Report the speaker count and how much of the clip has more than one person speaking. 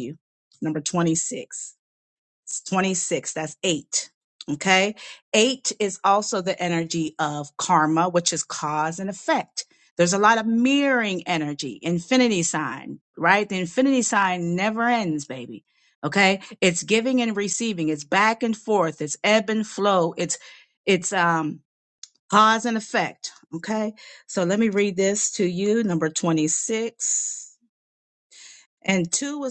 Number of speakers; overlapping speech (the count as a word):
one, no overlap